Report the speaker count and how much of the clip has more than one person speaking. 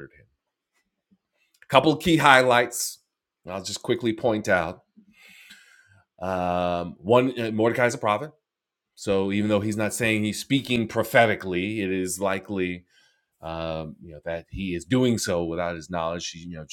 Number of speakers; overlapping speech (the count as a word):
one, no overlap